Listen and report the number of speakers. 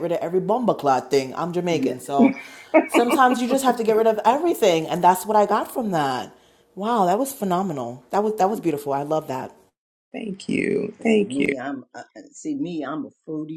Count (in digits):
3